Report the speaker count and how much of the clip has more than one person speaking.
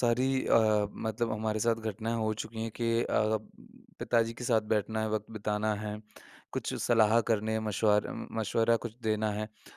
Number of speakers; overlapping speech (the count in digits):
1, no overlap